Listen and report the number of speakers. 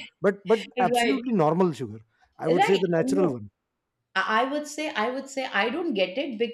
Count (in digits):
2